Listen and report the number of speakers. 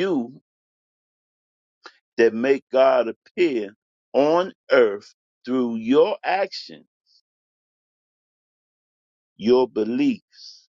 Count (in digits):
1